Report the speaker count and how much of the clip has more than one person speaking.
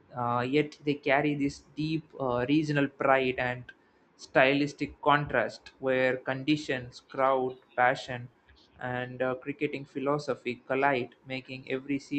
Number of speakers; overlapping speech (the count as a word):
one, no overlap